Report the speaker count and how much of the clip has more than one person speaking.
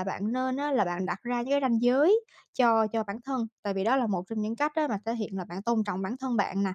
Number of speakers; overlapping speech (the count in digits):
1, no overlap